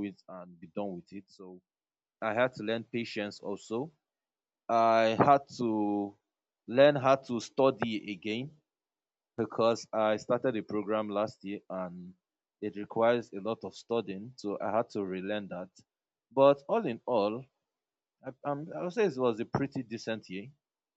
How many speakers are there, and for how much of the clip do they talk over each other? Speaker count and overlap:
one, no overlap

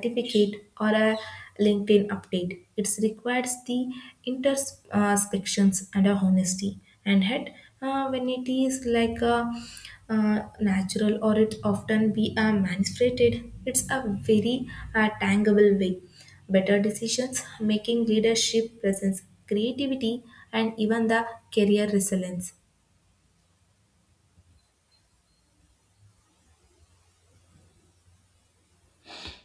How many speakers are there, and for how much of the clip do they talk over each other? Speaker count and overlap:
one, no overlap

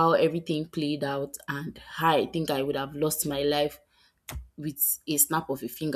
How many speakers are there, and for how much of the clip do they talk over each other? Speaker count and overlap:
one, no overlap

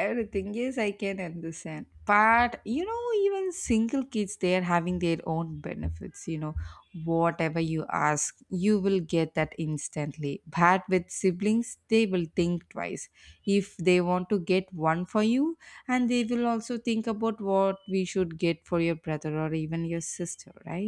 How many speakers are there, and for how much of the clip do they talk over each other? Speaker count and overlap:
one, no overlap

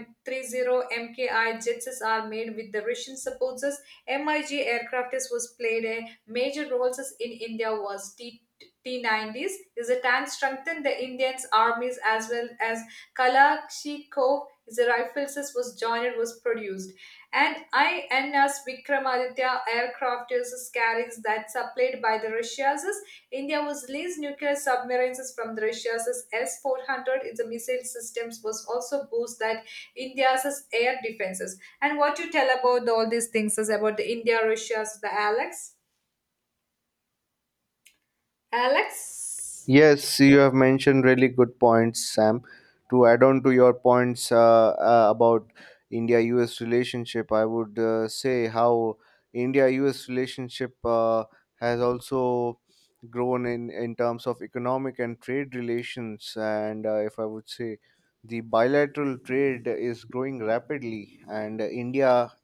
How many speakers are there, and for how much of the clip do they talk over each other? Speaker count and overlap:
two, no overlap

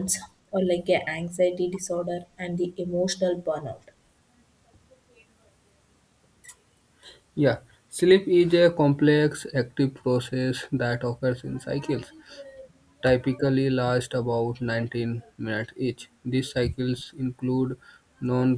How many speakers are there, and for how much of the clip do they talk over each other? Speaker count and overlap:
two, no overlap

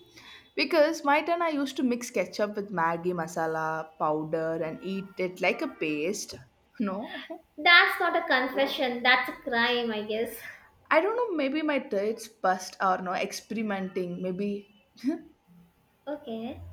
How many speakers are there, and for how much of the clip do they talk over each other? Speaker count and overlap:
two, no overlap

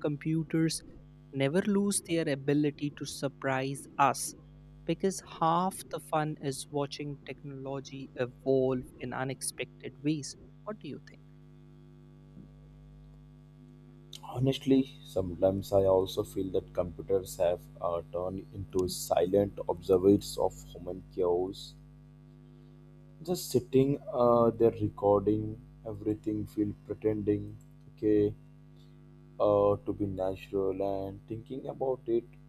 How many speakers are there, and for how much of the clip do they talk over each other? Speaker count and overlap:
two, no overlap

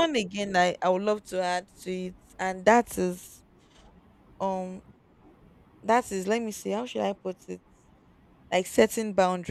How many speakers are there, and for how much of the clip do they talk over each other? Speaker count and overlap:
one, no overlap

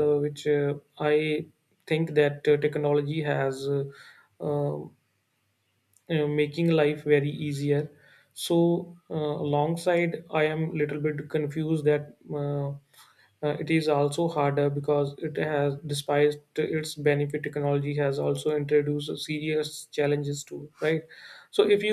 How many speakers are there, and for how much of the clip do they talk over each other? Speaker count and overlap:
one, no overlap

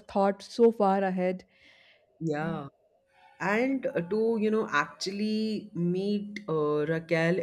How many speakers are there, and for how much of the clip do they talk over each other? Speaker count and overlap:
two, about 1%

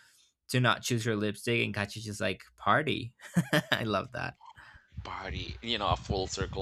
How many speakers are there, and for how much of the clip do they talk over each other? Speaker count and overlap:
two, no overlap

